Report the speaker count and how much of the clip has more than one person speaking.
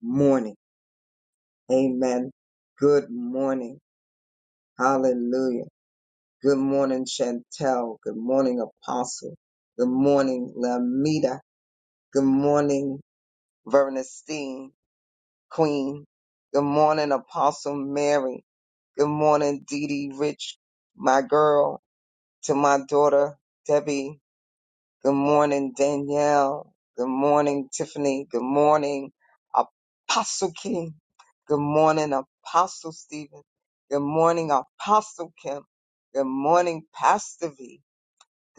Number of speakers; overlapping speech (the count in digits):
1, no overlap